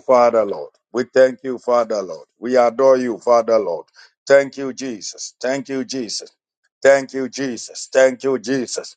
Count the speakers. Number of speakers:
one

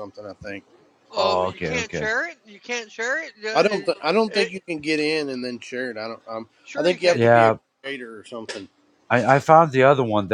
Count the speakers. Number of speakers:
three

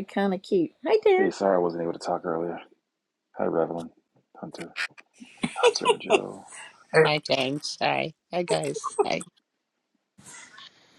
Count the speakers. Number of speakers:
three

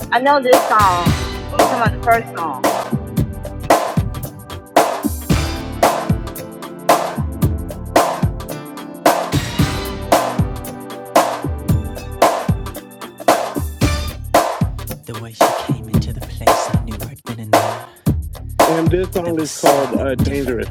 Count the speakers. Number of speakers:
three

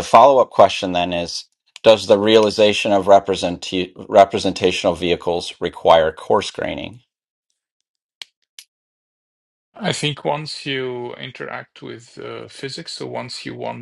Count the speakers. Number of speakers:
two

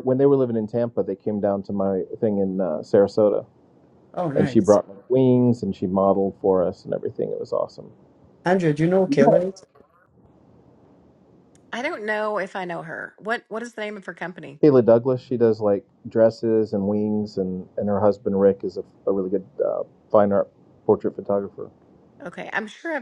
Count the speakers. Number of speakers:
three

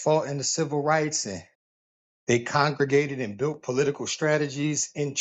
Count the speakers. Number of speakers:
one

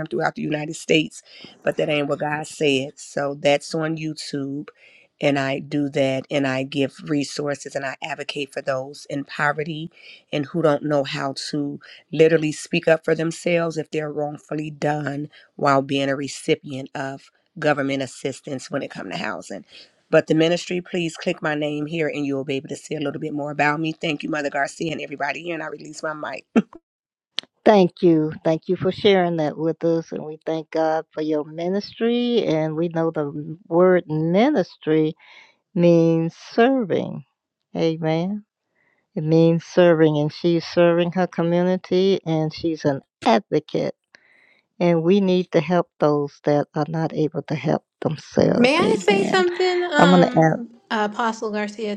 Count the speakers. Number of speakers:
three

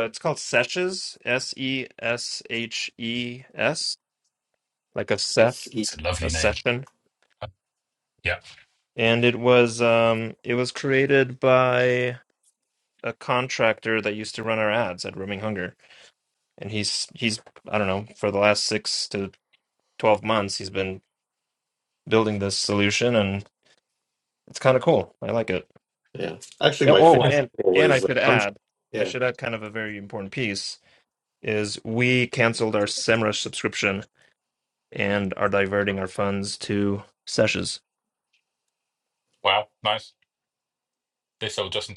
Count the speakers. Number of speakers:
three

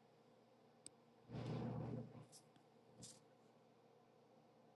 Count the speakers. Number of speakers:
zero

